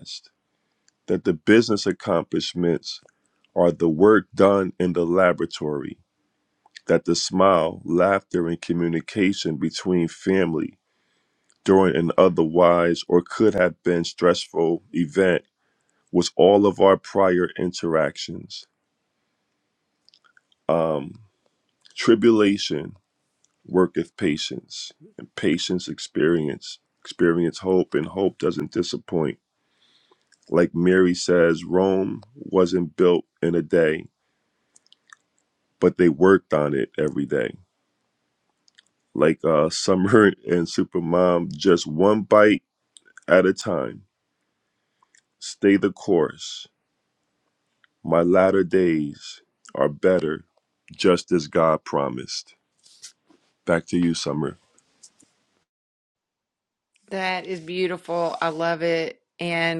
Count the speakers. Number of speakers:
2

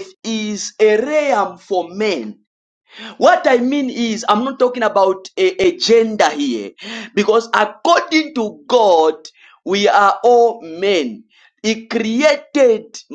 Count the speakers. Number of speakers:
1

